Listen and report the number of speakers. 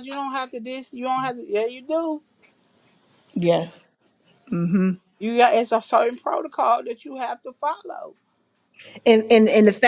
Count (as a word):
two